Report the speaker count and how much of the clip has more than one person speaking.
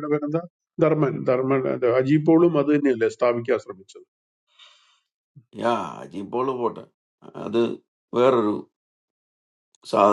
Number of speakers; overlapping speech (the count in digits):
2, no overlap